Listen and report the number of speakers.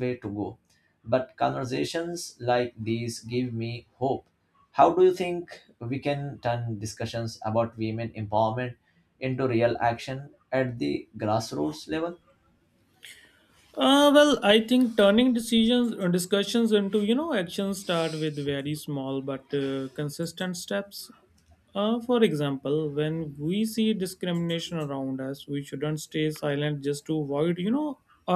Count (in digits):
2